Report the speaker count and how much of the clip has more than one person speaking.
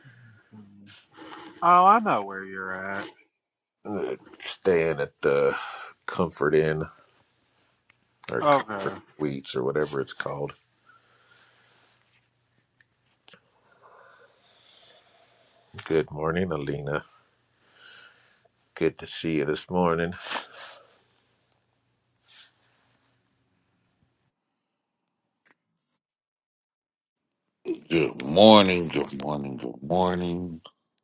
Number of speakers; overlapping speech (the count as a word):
three, about 2%